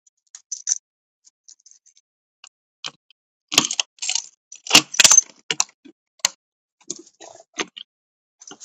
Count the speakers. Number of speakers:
0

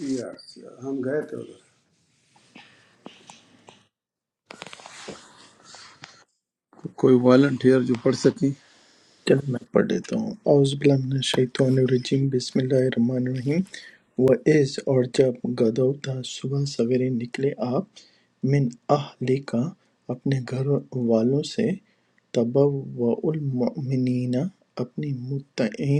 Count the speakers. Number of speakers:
3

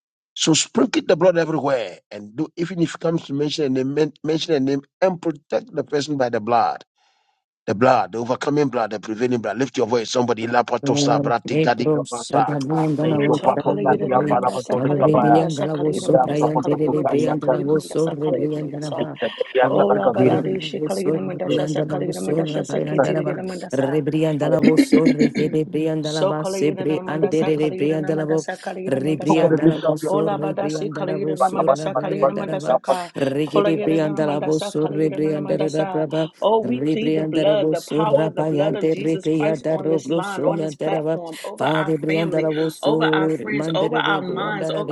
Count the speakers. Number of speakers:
3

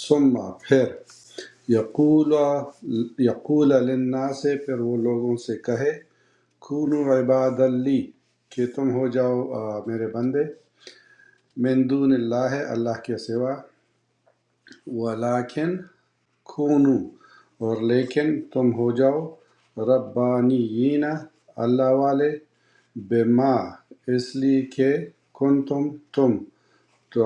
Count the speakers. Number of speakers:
1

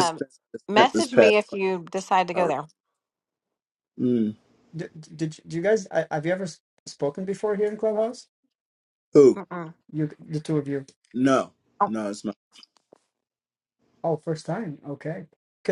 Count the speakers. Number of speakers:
3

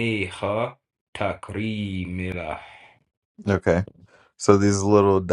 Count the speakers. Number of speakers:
2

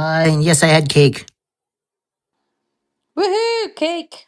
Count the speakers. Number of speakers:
2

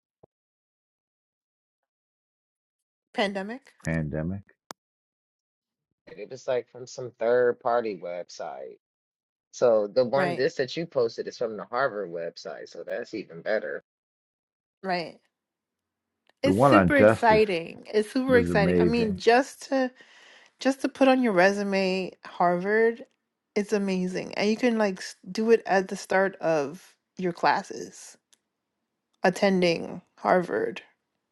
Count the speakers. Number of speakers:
3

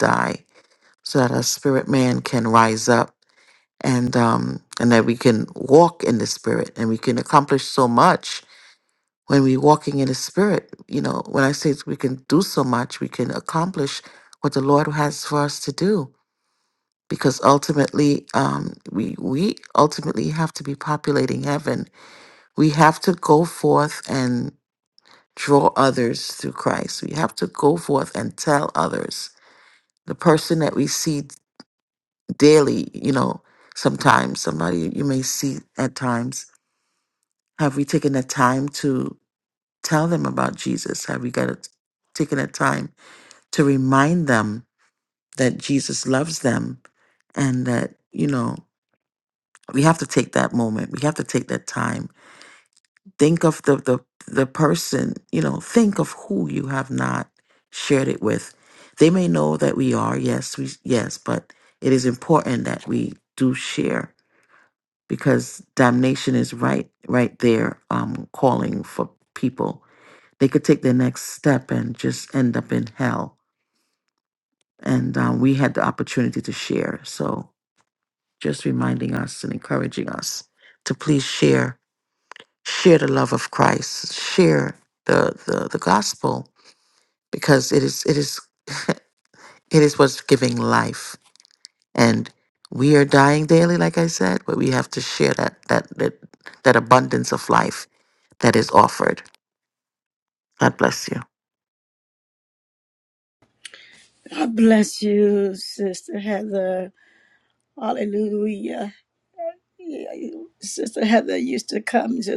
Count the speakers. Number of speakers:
2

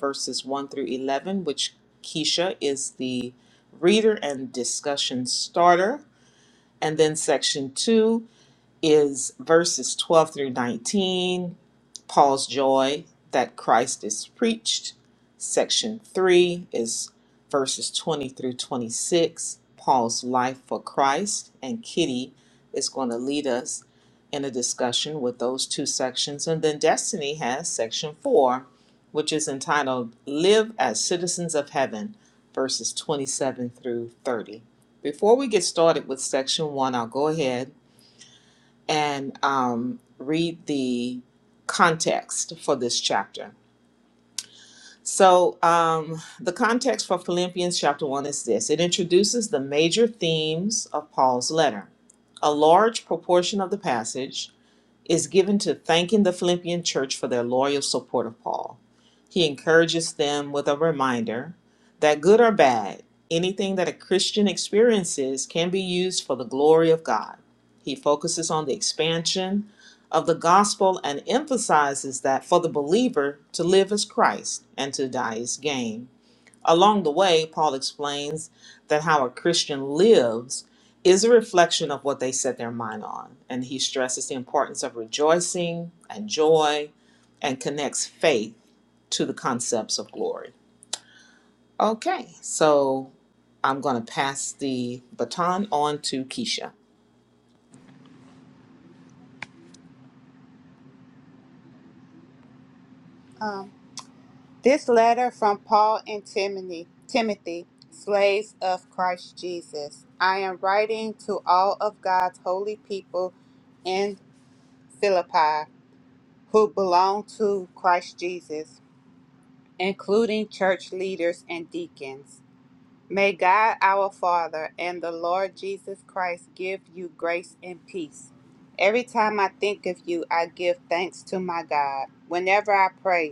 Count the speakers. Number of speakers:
2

